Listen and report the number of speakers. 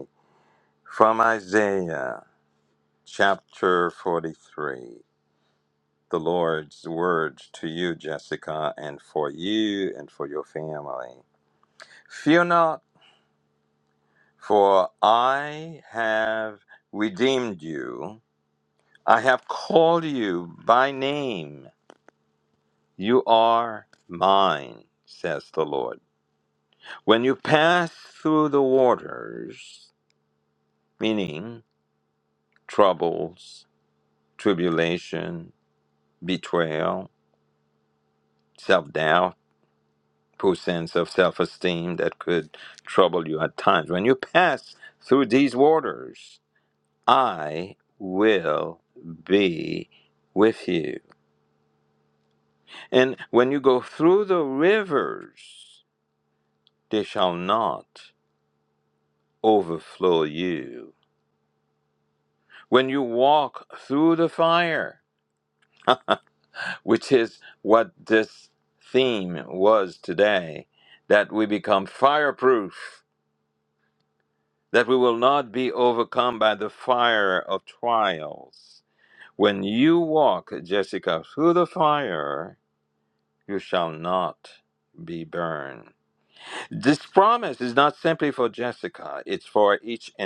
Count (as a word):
one